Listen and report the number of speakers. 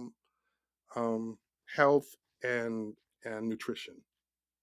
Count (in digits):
1